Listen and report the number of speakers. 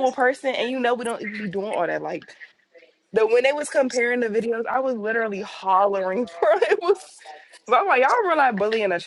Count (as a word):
one